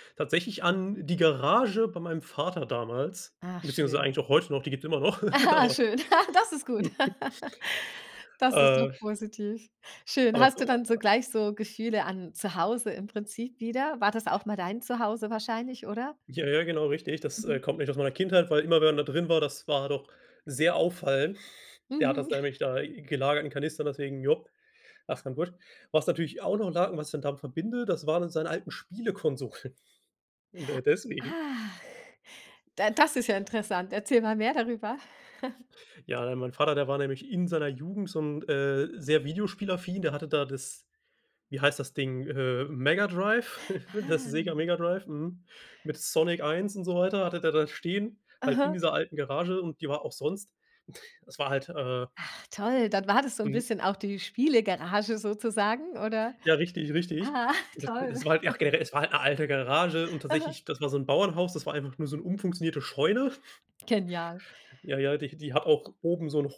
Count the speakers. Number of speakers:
2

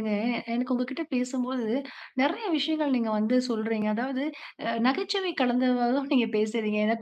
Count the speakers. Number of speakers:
1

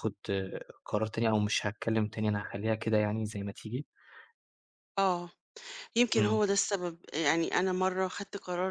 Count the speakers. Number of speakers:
2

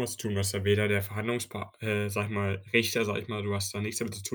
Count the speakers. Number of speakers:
1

